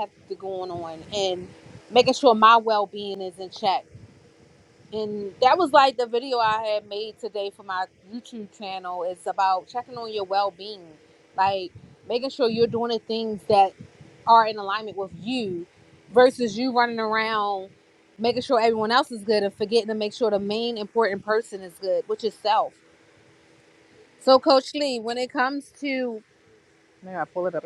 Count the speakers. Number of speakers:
1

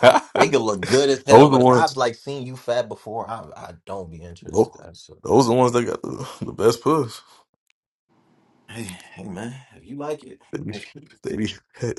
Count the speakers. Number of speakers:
2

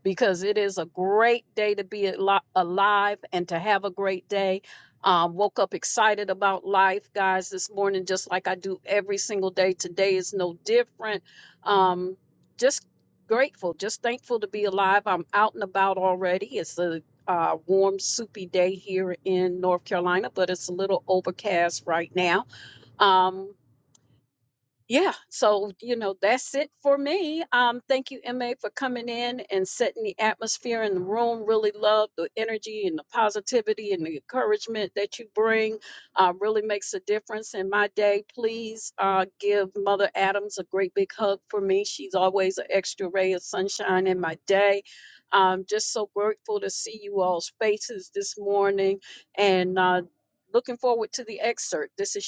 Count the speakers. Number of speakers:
1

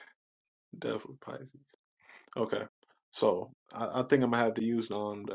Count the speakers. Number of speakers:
1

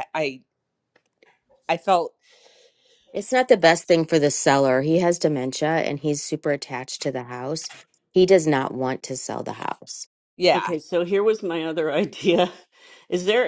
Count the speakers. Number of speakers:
3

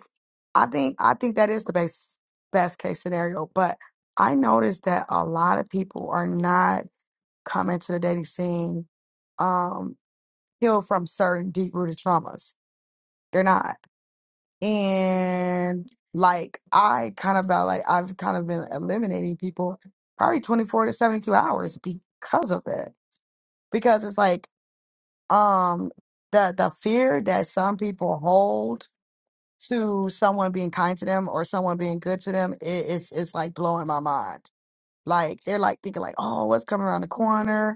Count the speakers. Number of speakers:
1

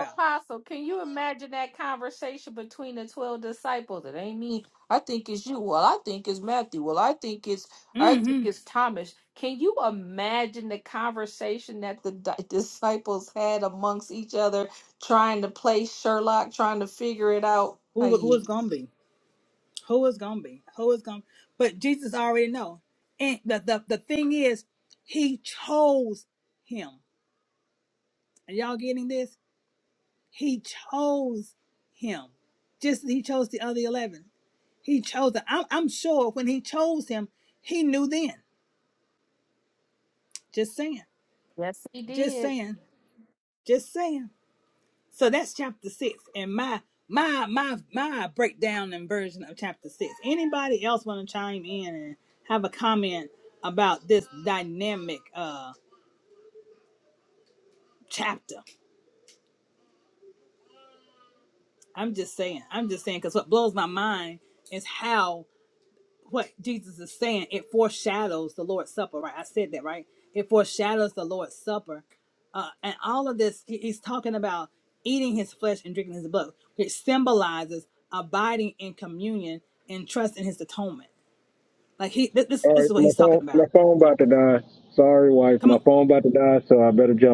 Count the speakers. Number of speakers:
3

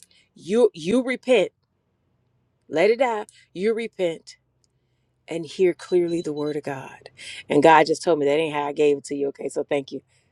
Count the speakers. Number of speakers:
1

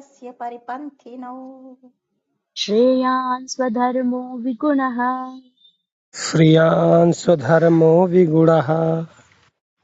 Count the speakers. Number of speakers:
3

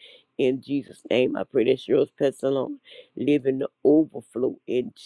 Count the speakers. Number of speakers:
1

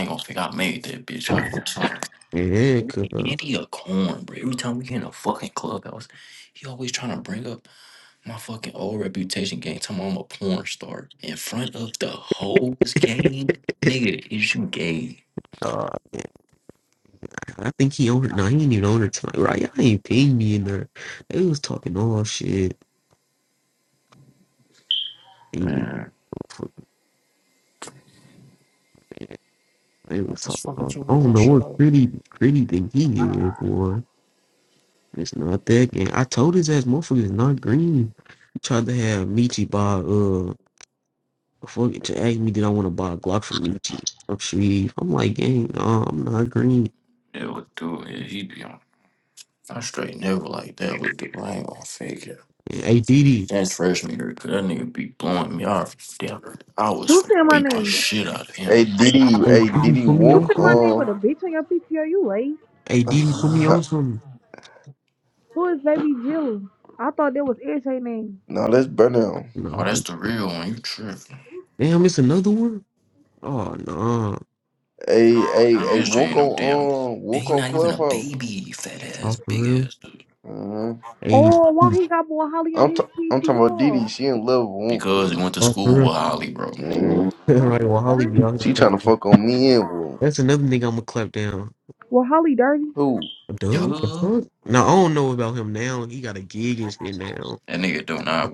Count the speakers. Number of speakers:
4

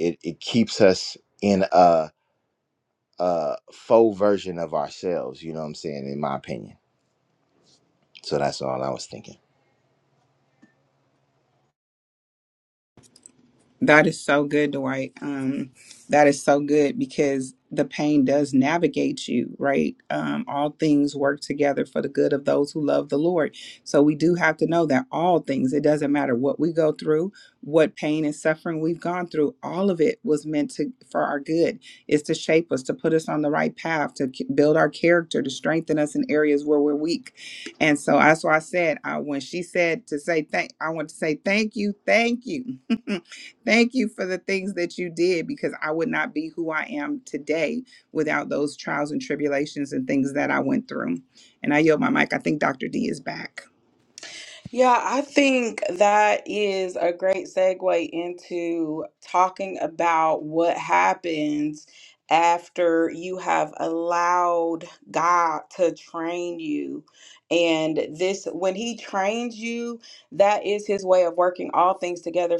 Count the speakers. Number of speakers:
3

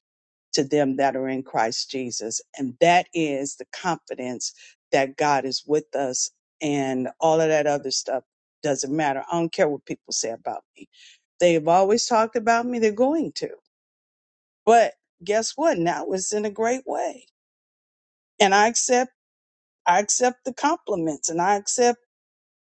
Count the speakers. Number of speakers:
1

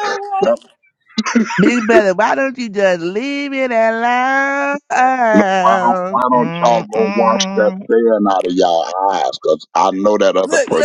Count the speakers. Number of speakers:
3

